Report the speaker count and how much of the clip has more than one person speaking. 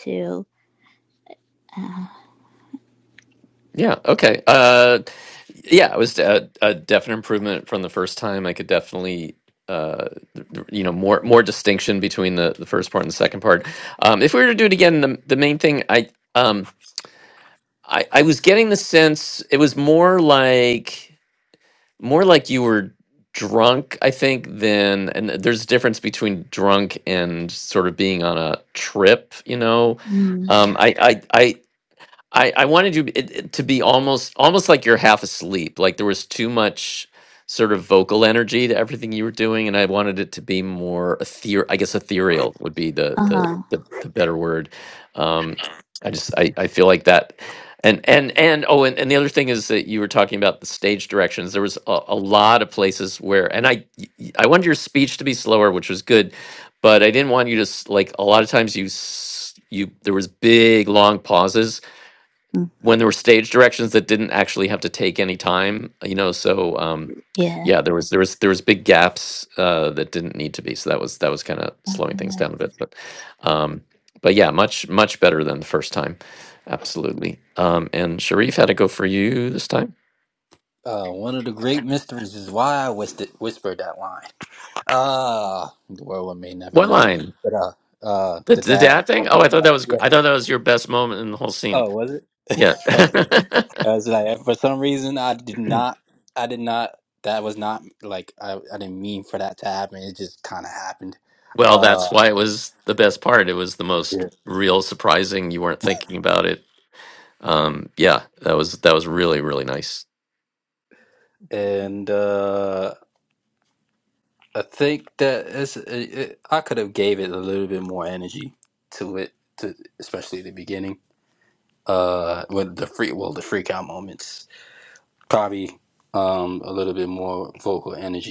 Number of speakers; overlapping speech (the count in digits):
3, about 3%